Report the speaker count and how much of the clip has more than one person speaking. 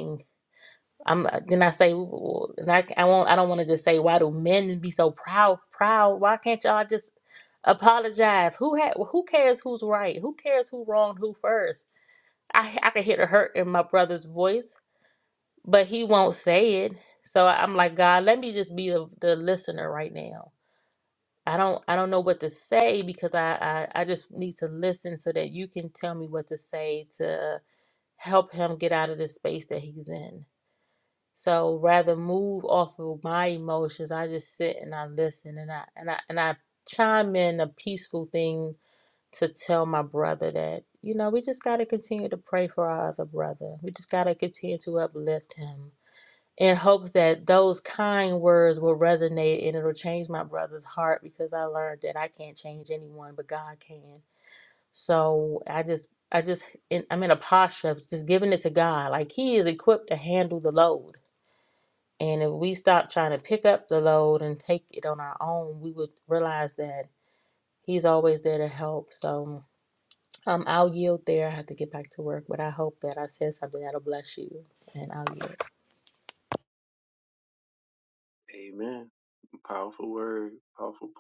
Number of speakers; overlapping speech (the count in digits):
2, no overlap